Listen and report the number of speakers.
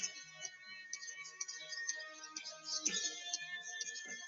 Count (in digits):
0